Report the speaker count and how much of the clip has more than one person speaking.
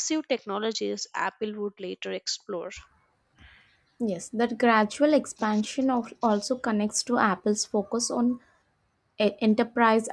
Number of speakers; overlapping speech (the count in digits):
2, no overlap